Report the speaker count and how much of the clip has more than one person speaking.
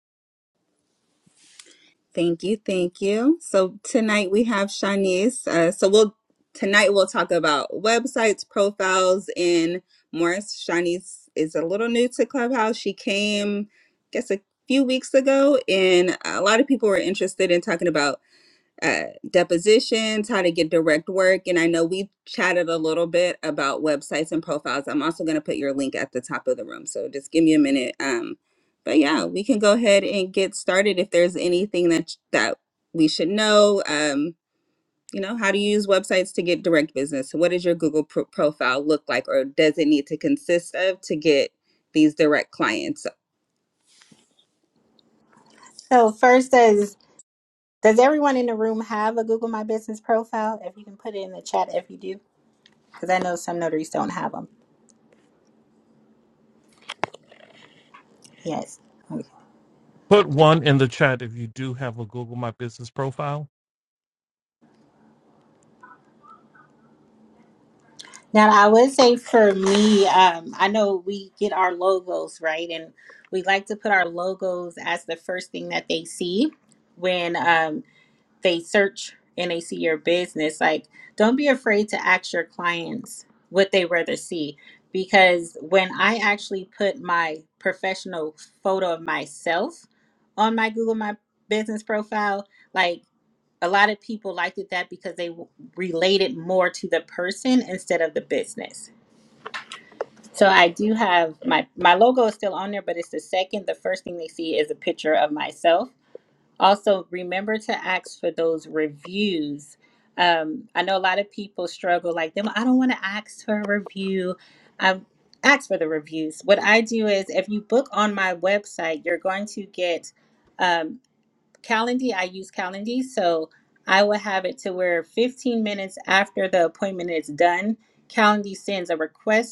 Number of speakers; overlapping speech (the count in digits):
3, no overlap